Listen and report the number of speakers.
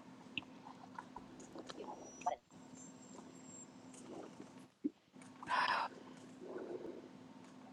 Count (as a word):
zero